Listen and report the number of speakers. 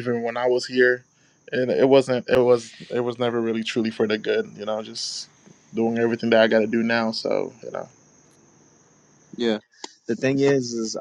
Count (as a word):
two